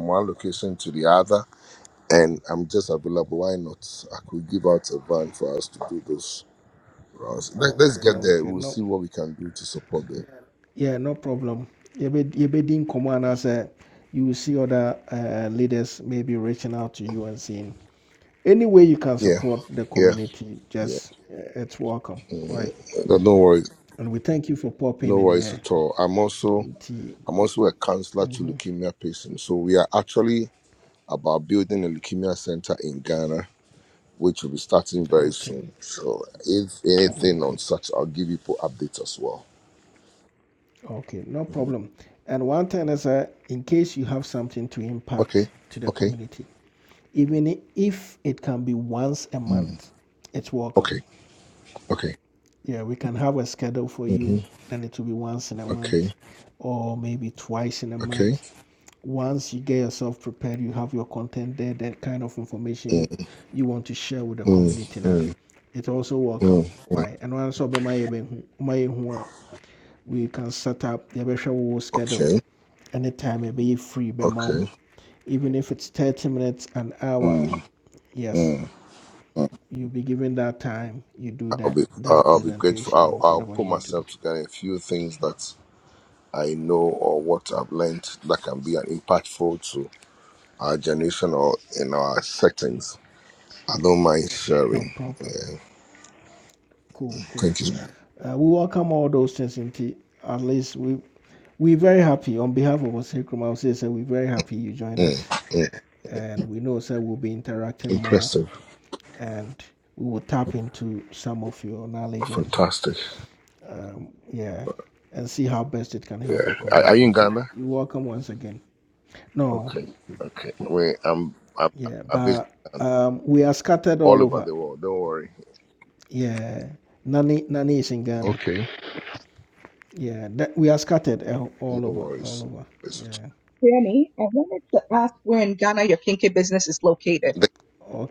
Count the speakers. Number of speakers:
3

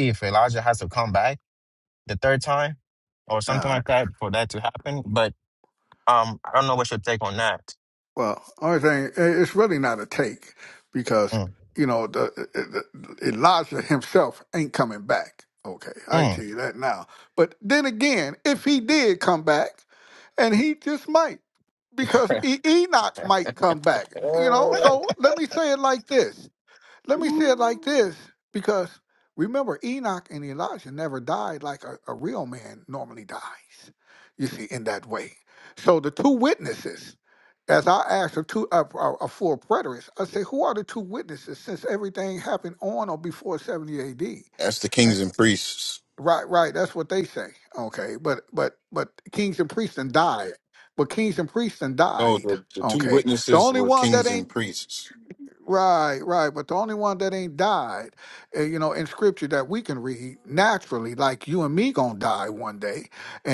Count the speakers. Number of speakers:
3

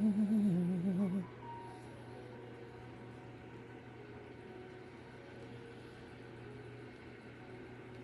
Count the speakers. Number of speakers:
0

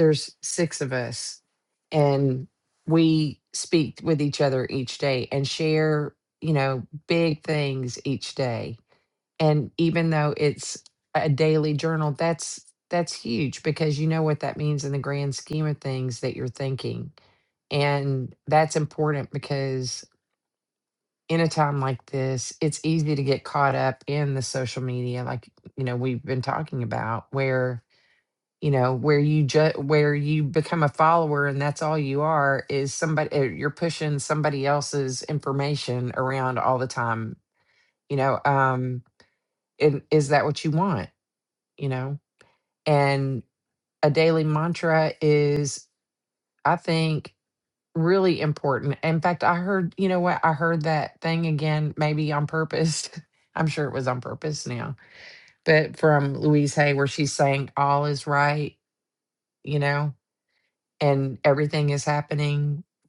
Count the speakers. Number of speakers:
1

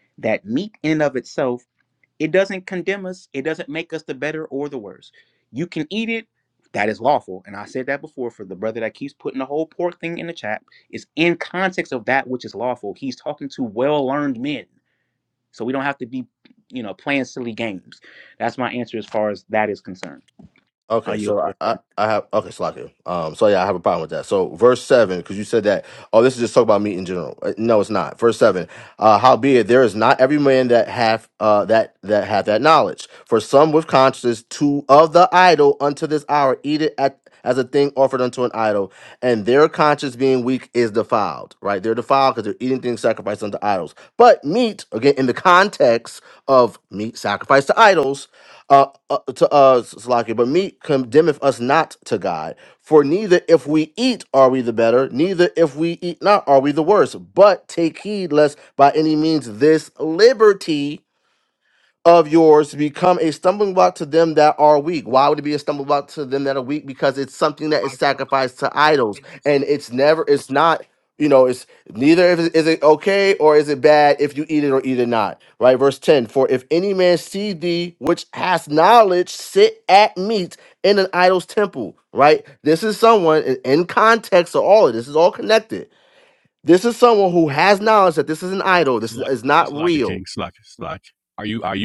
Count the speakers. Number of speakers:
3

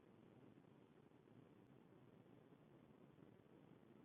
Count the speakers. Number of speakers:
0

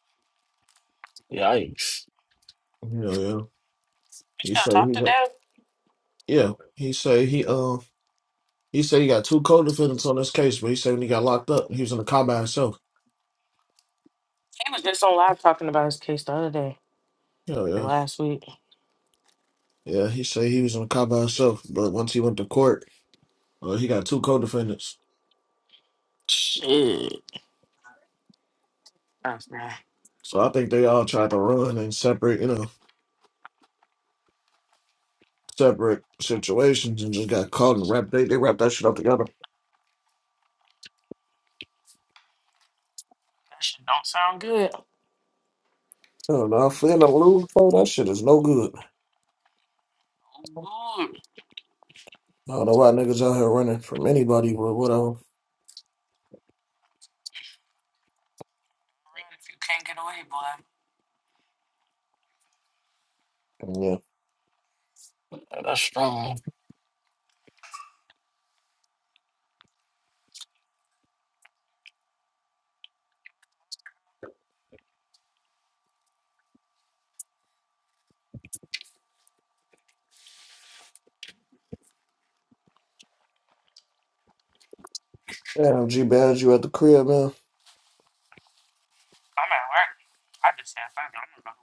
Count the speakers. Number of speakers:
3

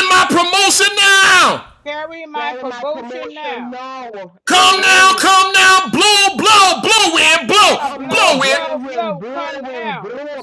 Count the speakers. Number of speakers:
3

